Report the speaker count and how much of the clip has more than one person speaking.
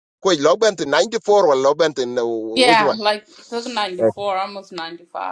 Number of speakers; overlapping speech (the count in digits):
2, about 6%